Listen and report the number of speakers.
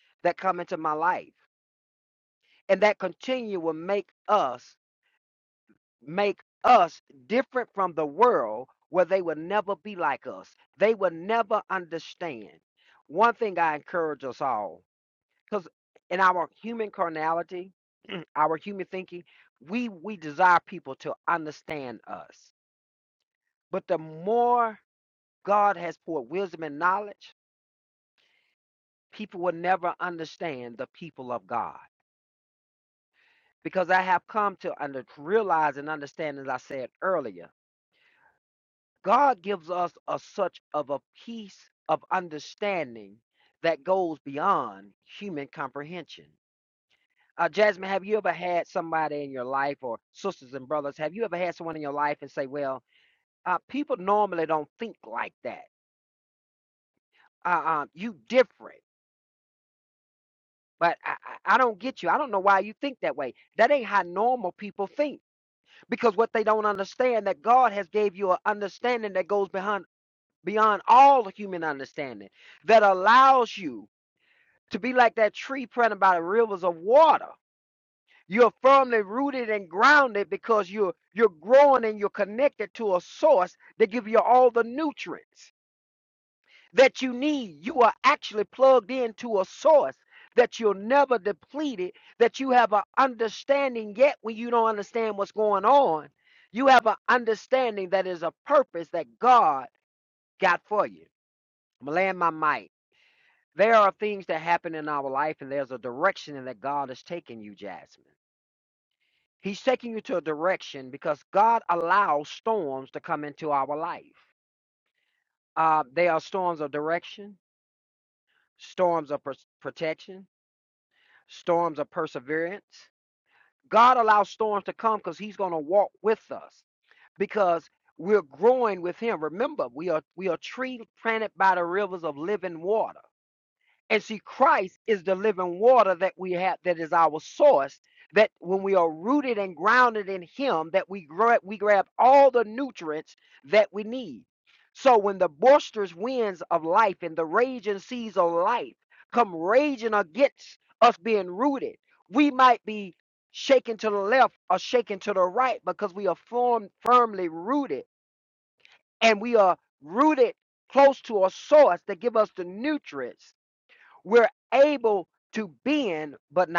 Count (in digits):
1